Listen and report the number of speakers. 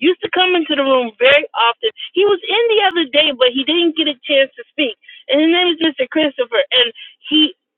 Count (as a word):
one